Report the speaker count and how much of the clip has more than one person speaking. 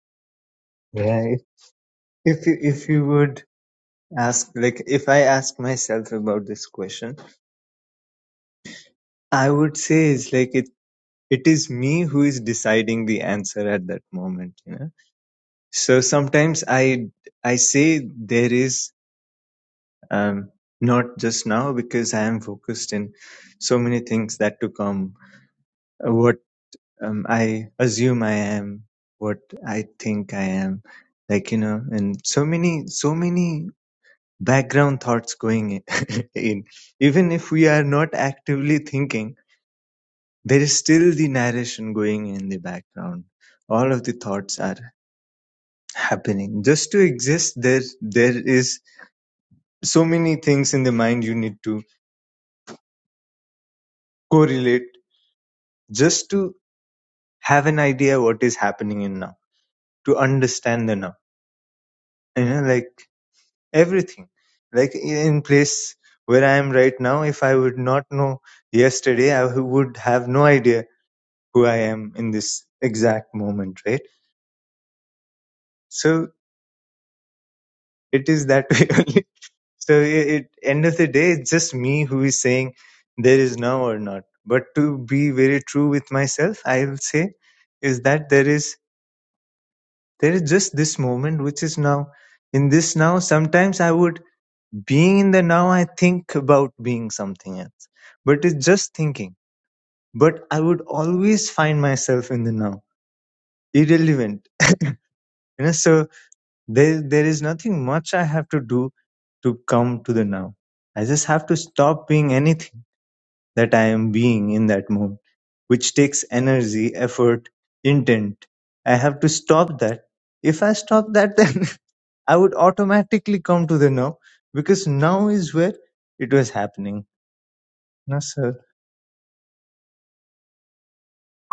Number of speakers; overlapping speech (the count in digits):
1, no overlap